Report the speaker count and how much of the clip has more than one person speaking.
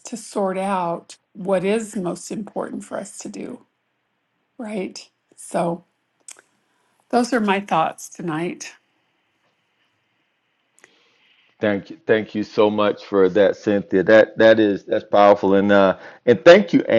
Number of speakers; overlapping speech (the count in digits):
2, no overlap